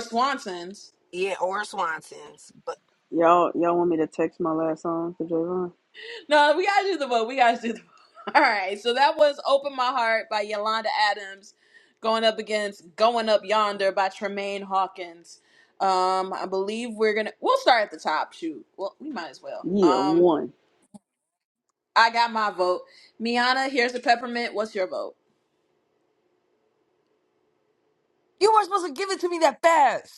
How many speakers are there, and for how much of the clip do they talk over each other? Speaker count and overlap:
4, about 2%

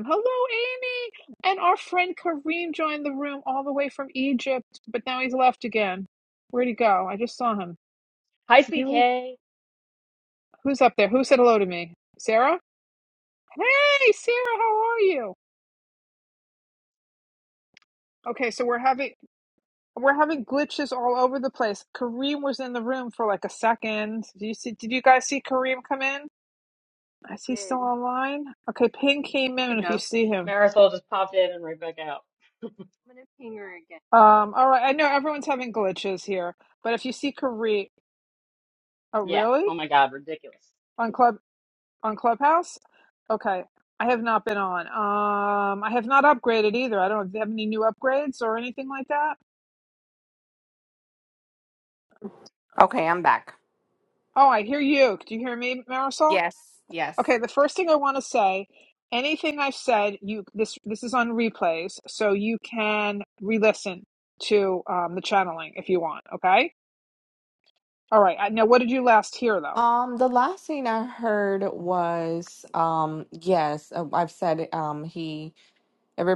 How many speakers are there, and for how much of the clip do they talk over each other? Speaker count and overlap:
4, about 2%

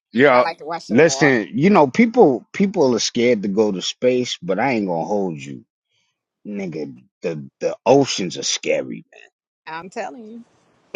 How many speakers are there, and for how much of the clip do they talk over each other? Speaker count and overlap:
2, about 6%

